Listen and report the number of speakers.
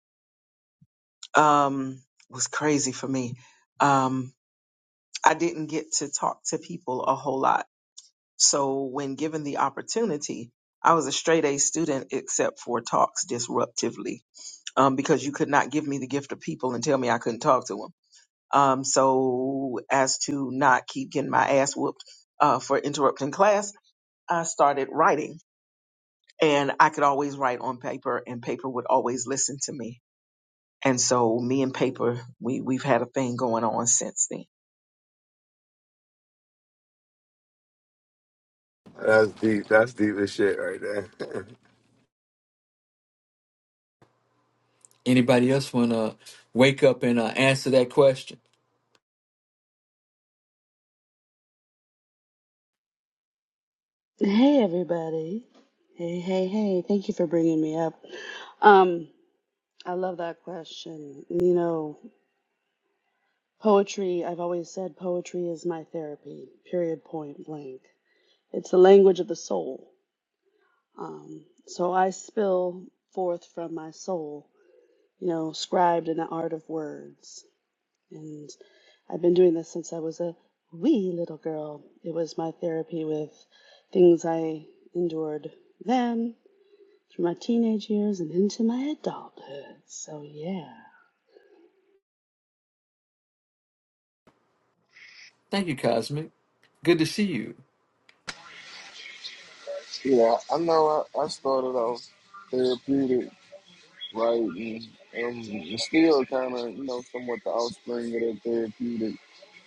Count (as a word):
five